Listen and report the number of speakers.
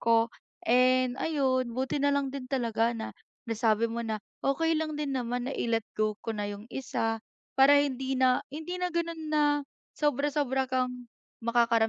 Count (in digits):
1